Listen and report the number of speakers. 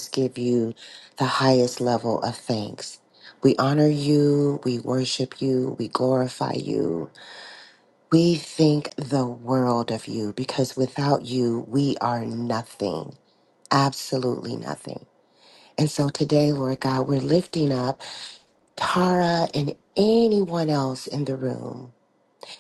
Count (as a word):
one